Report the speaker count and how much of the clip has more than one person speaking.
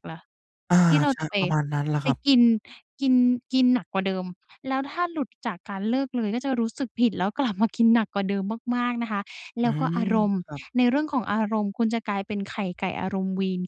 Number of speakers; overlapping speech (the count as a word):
two, about 8%